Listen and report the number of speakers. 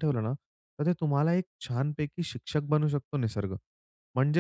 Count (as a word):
one